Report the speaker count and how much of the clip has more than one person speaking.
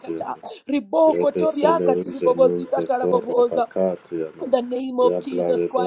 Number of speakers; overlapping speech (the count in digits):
2, about 64%